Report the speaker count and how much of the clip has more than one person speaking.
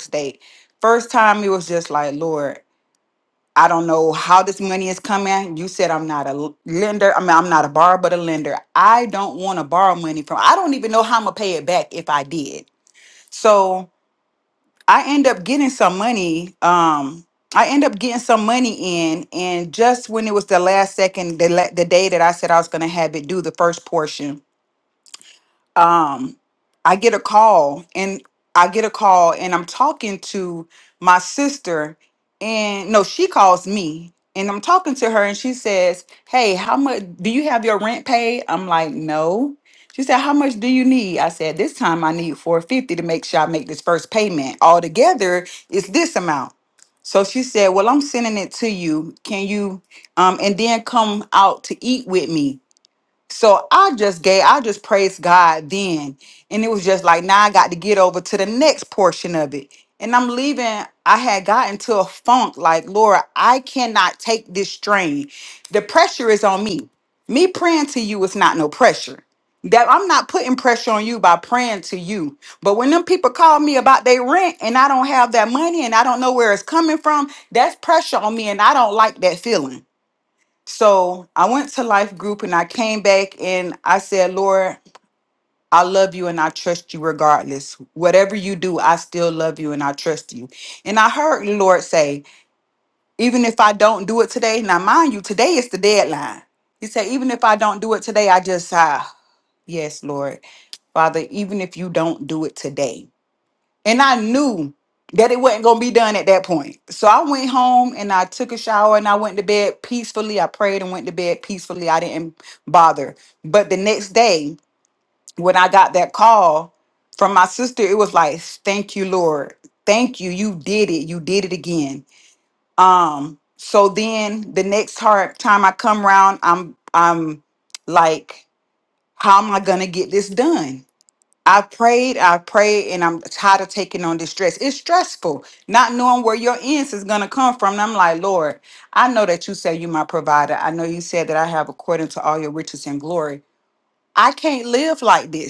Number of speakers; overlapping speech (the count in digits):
1, no overlap